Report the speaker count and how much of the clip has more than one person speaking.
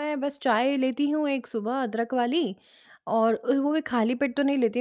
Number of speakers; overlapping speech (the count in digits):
1, no overlap